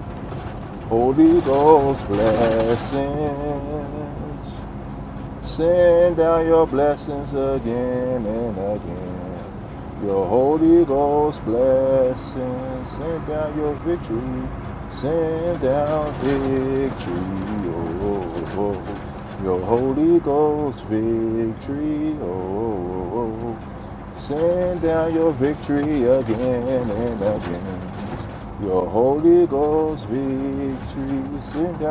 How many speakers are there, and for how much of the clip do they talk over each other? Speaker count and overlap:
one, no overlap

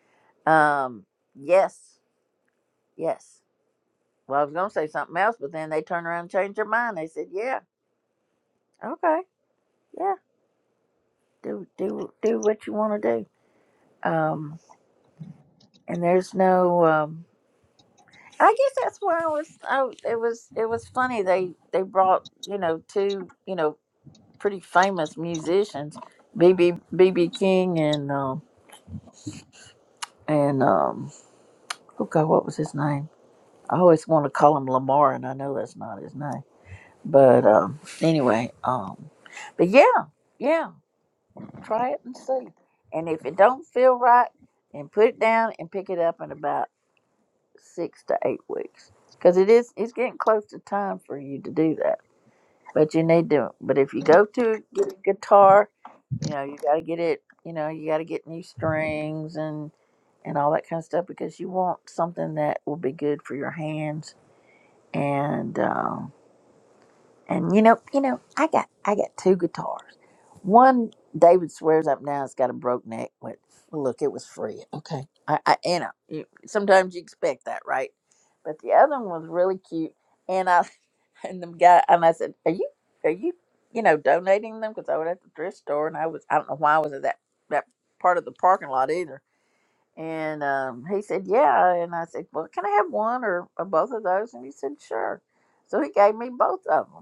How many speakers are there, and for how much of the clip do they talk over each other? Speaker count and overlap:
one, no overlap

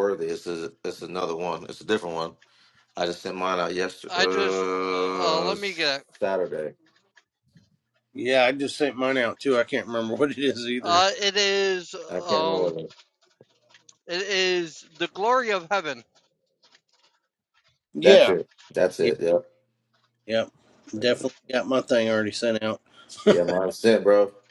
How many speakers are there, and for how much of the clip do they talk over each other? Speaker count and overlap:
three, about 10%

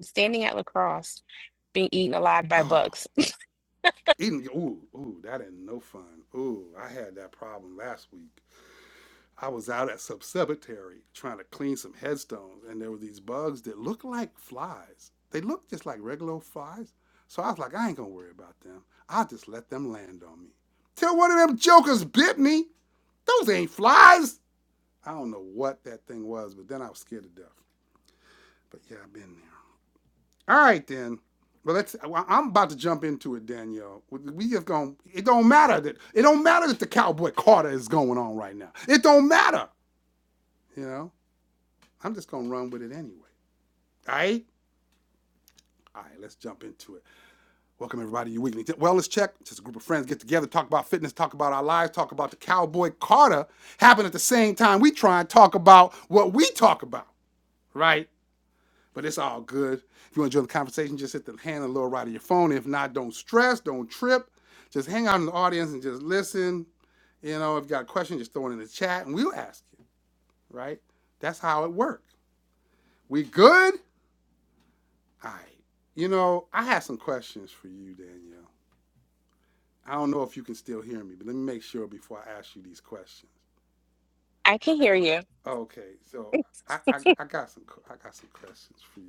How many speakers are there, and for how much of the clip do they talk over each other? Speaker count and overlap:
two, under 1%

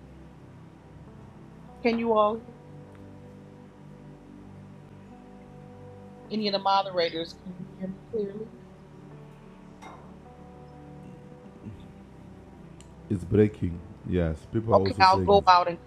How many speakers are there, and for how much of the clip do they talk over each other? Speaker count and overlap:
two, about 4%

